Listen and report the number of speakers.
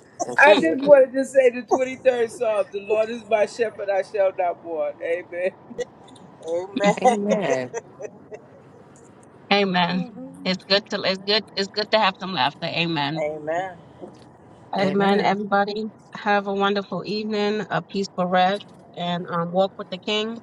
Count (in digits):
4